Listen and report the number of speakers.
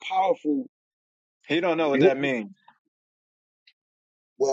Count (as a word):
two